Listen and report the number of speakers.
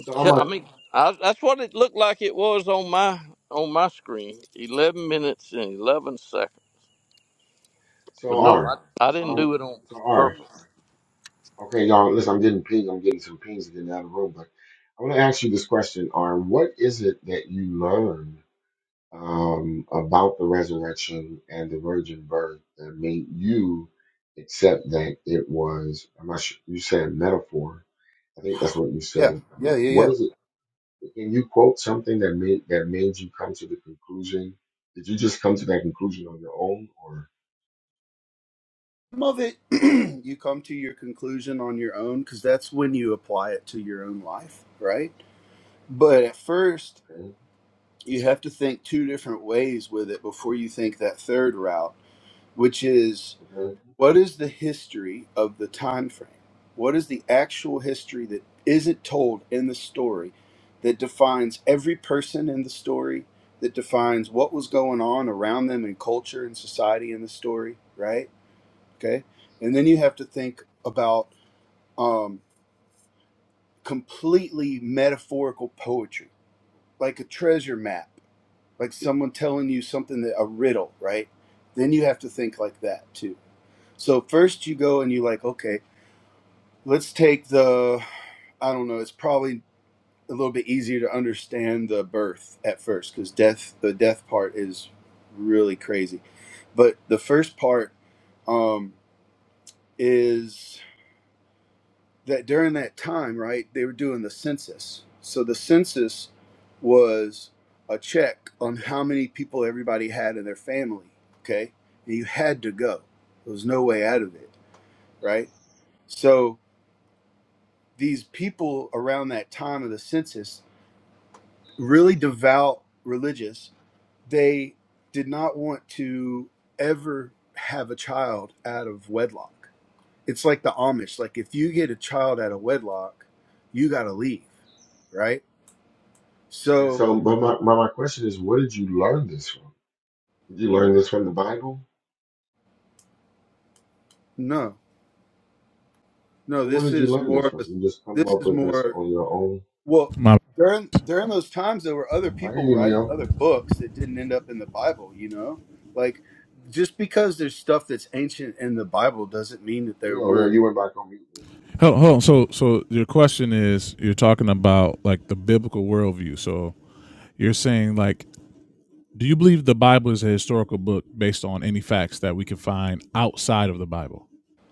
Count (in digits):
4